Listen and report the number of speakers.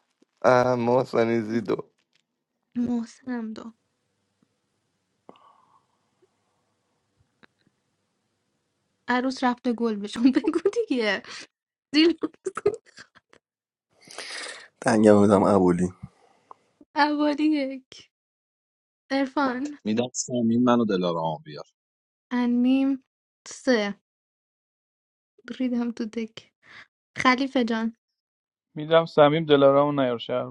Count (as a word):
five